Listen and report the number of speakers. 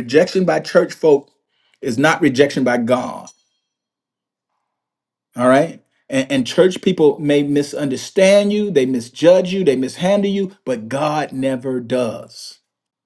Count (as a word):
one